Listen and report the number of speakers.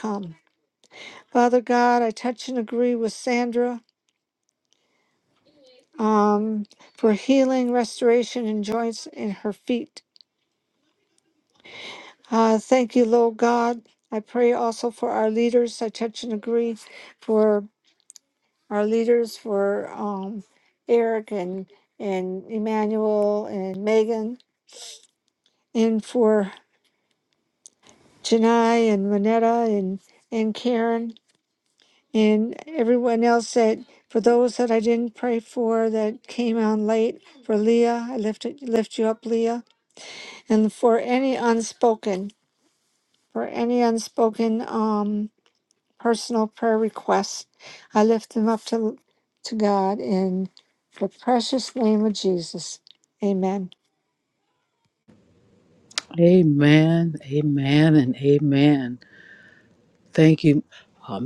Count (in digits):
2